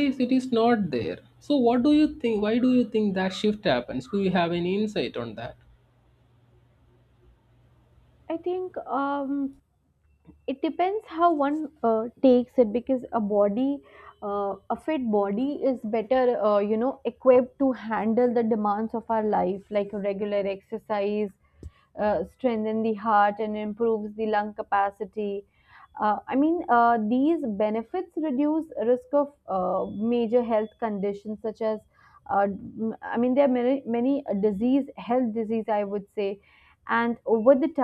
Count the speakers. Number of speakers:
2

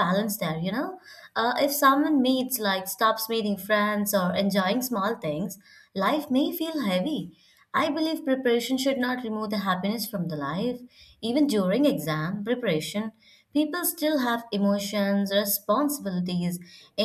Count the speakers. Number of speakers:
1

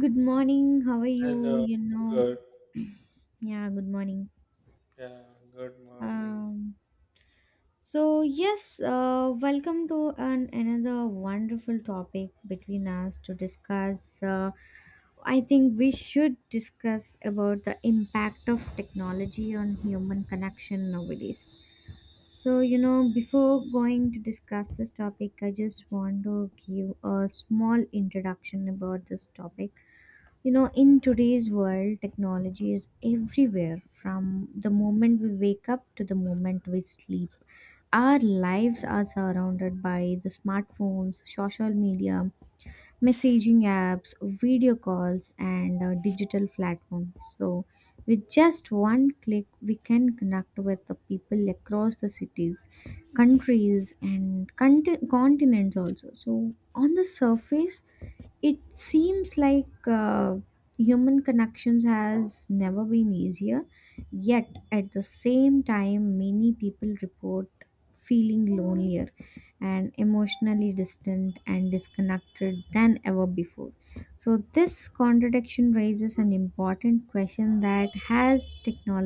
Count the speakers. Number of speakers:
2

